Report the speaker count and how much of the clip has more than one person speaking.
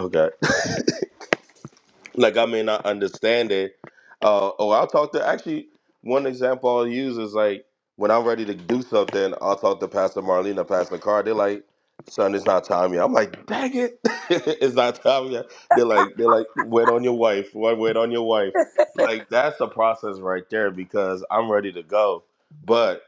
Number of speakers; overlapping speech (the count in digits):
1, no overlap